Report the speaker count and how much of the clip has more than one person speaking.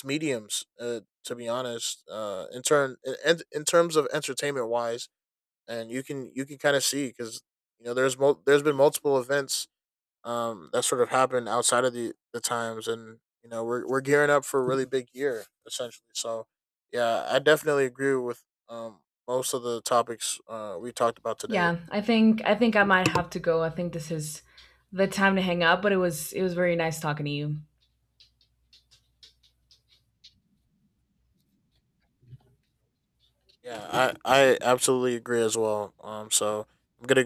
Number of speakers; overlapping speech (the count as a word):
two, about 1%